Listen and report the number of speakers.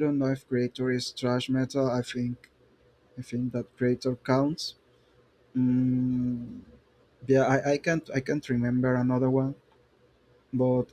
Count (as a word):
one